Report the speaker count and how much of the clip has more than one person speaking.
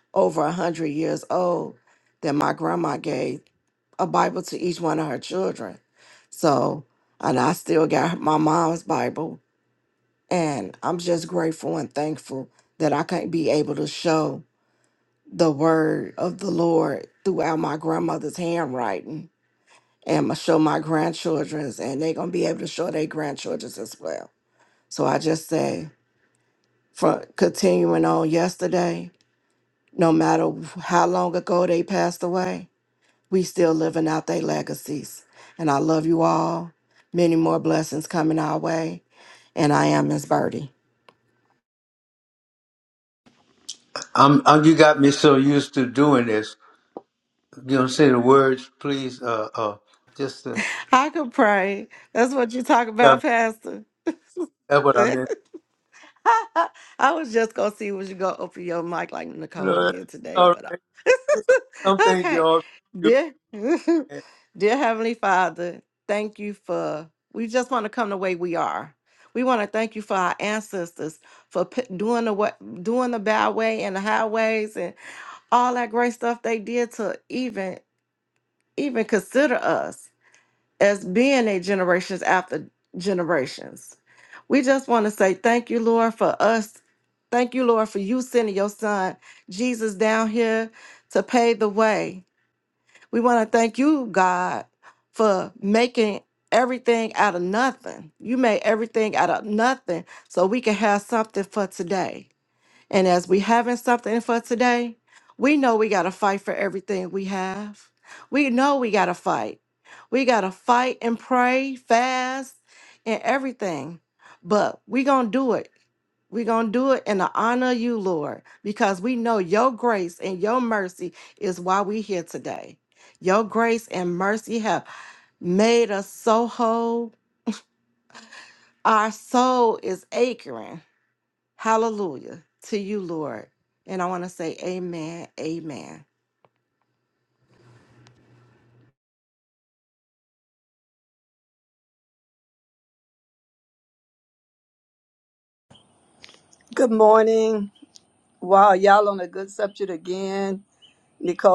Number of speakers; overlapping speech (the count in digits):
3, about 1%